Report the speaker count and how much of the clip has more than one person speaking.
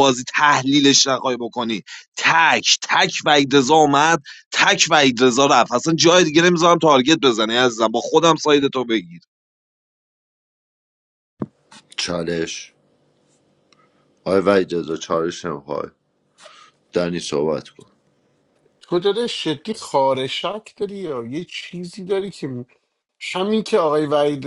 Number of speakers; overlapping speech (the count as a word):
three, no overlap